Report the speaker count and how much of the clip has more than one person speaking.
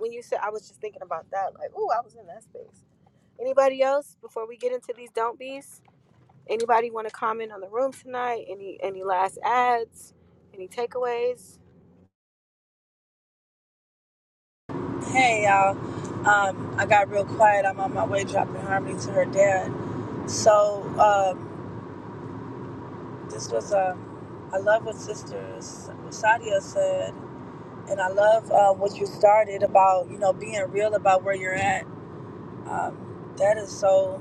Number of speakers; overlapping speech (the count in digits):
2, no overlap